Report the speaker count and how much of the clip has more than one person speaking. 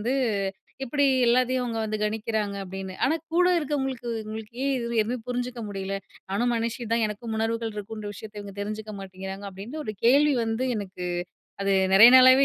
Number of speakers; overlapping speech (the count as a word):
one, no overlap